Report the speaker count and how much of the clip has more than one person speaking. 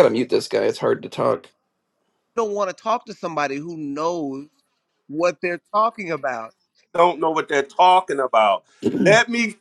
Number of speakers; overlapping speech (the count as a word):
three, no overlap